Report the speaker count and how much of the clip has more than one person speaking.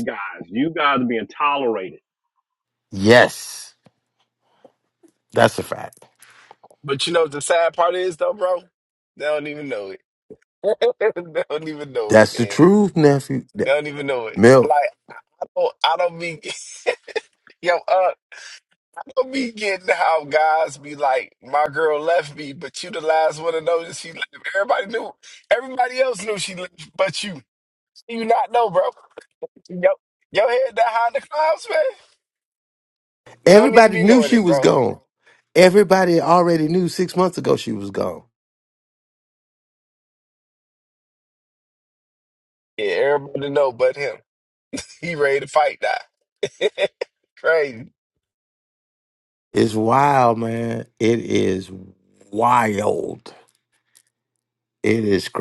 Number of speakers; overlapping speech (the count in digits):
3, about 4%